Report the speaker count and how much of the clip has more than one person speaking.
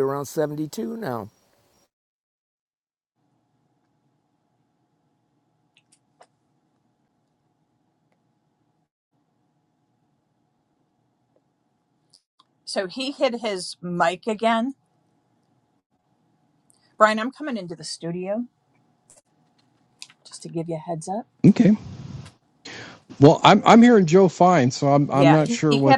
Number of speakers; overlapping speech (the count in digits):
3, about 3%